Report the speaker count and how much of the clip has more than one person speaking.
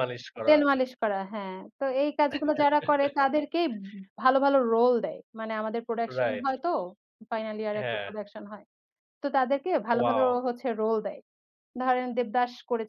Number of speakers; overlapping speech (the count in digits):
2, about 10%